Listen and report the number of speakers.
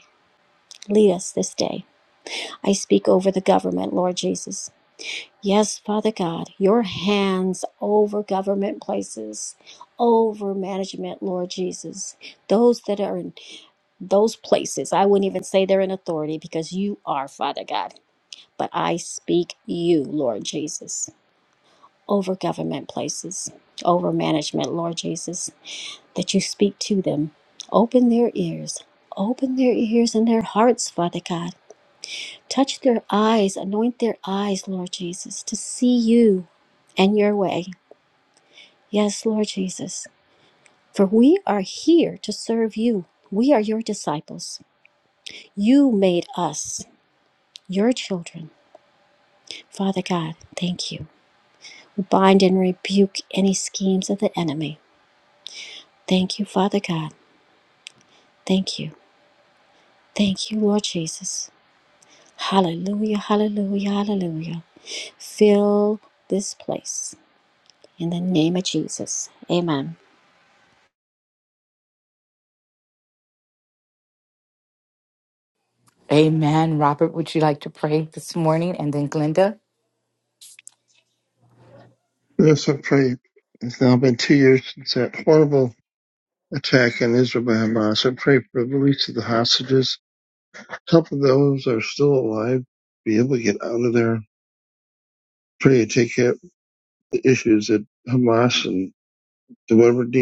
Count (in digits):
3